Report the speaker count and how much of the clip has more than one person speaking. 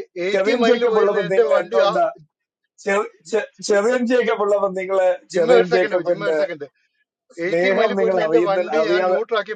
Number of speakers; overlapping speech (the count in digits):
2, about 47%